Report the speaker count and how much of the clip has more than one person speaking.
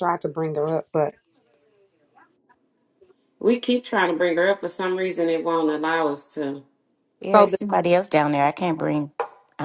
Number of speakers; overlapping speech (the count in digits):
3, about 2%